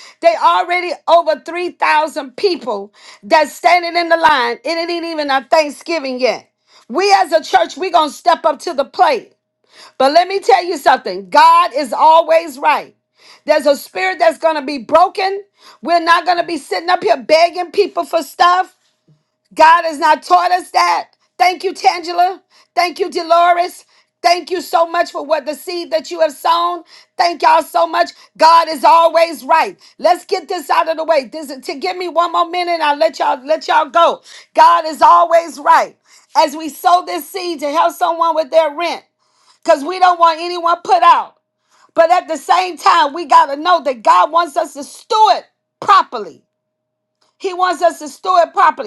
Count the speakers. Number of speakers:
one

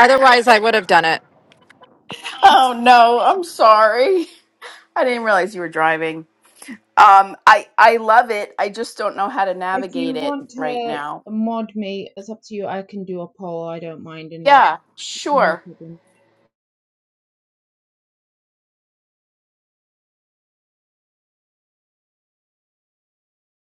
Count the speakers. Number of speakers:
three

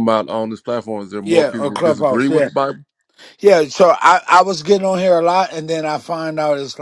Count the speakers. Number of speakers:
two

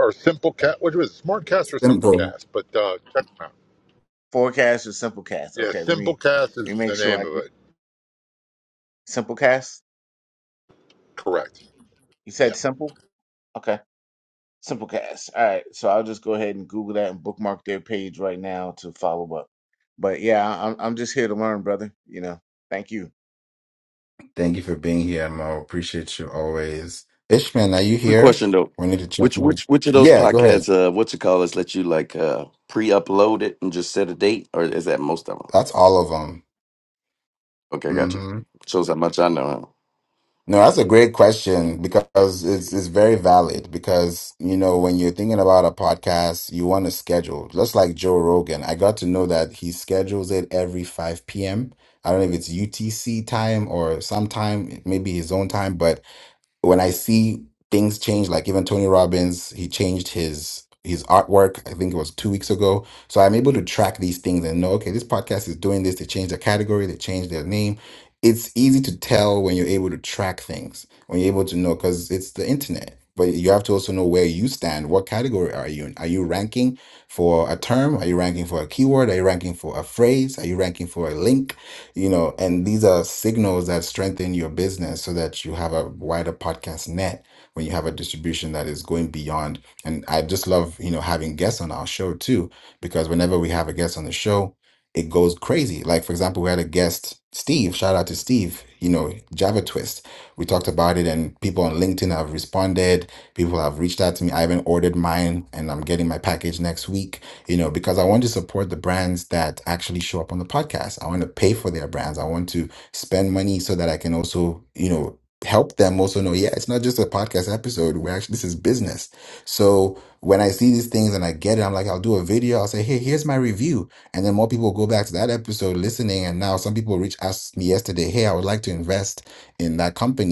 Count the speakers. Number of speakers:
four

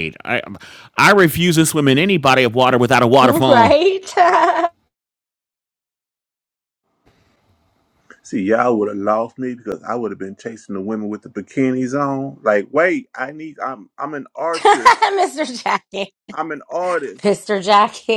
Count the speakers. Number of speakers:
three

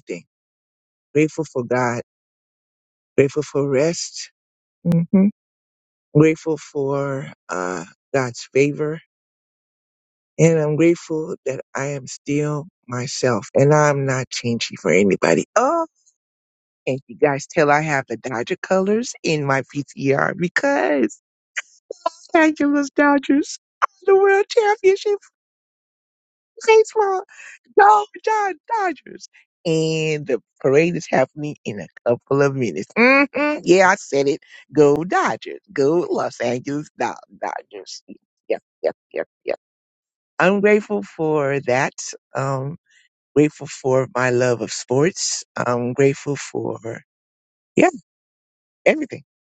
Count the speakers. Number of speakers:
one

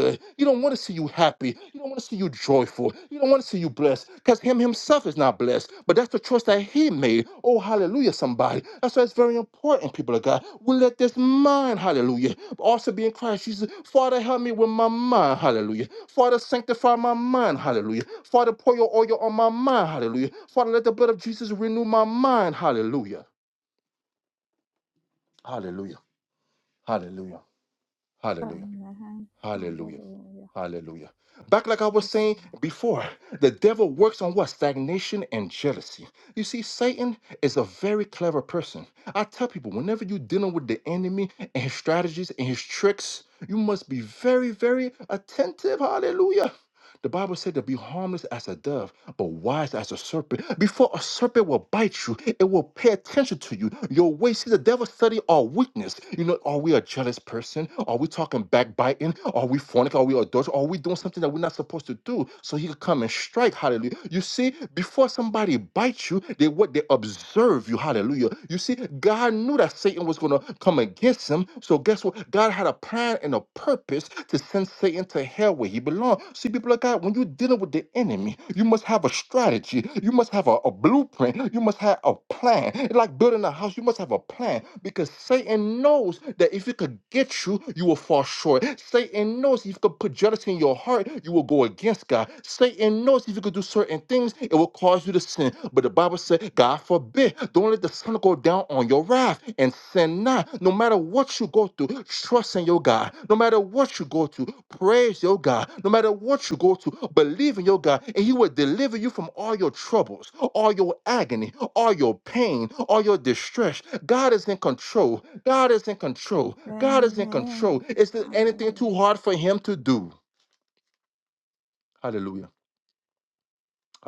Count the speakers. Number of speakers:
two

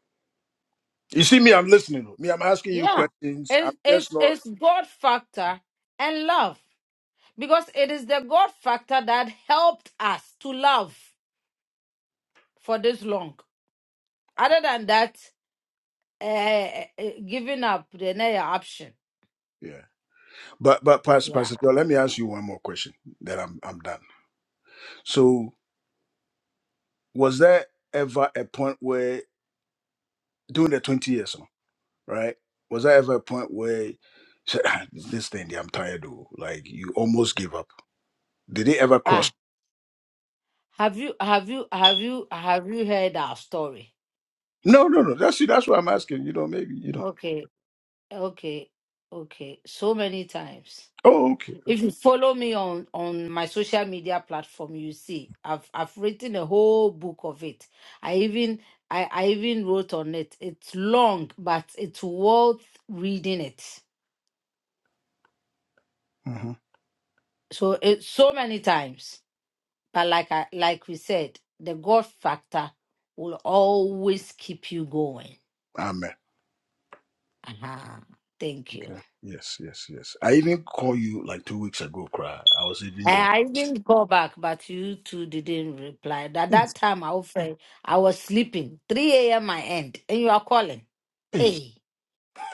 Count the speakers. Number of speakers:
two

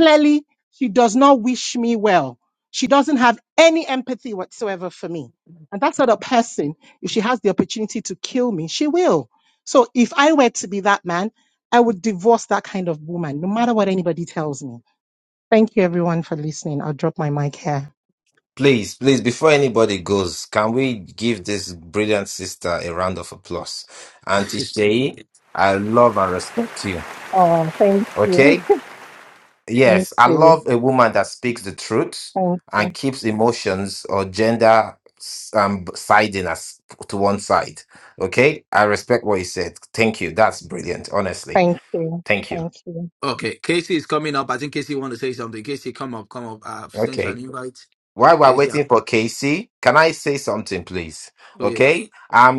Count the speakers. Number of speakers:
three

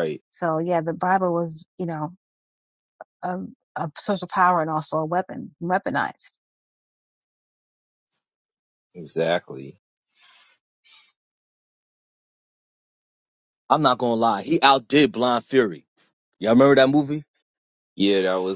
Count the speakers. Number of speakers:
three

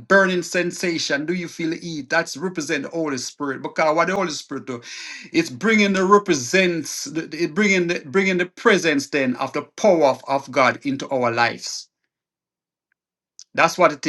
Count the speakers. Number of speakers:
one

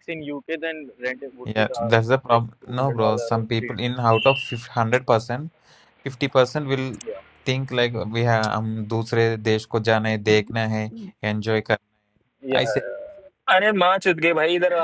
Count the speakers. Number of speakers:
three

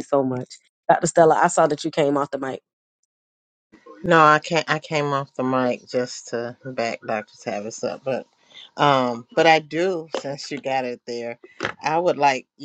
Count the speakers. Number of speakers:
two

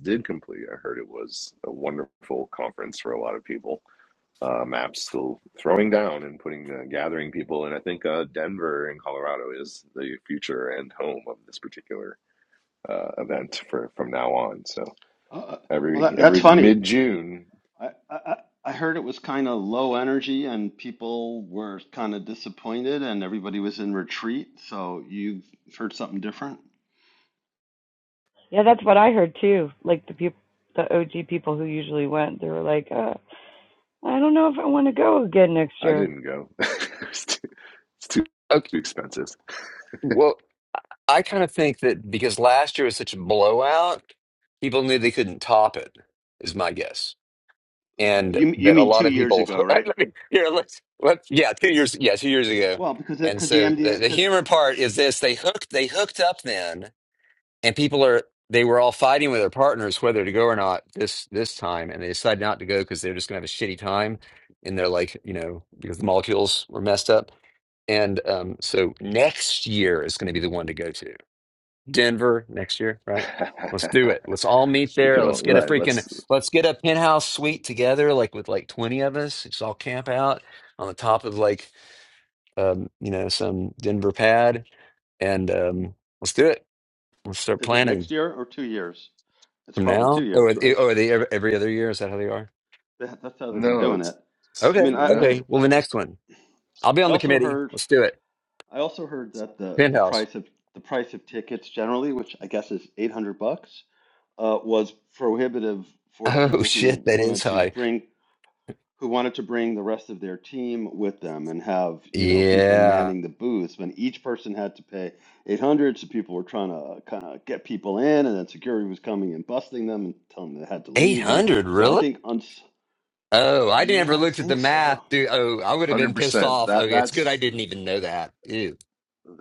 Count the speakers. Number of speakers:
four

